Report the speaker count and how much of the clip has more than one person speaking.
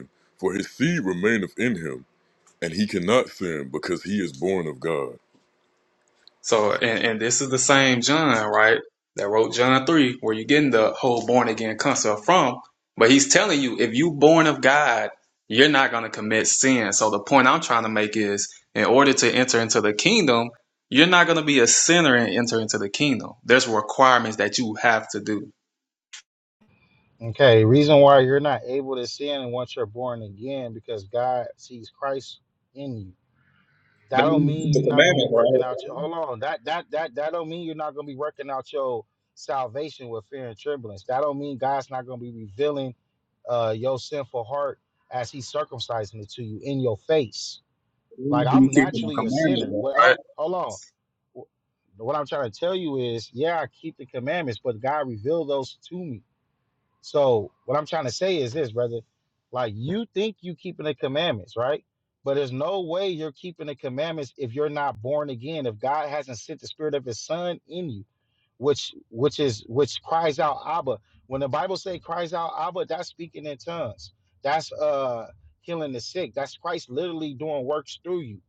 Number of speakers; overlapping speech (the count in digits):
3, about 4%